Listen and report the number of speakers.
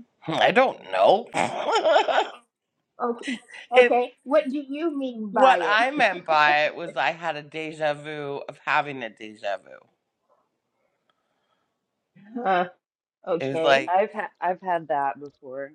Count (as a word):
three